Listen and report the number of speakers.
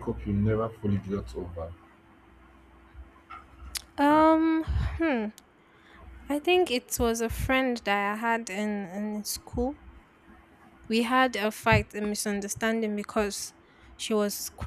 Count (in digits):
2